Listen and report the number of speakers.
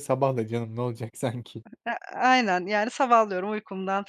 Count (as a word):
two